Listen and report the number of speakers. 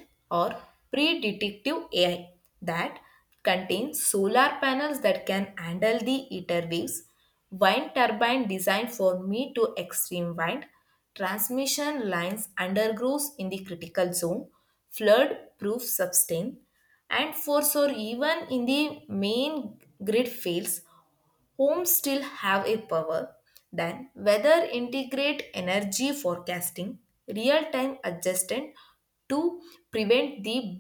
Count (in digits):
1